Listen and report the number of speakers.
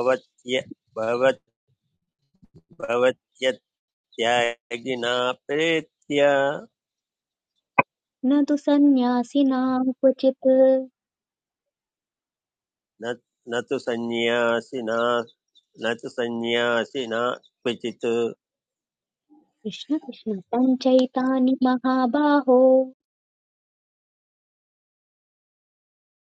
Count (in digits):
2